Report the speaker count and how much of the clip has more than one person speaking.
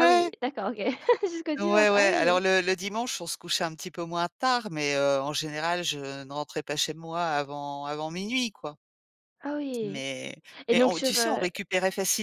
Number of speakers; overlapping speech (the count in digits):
2, about 17%